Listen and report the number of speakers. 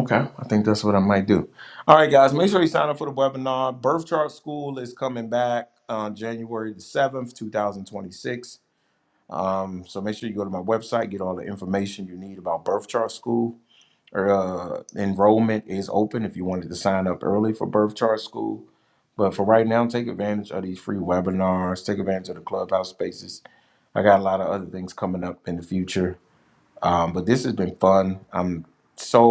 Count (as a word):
one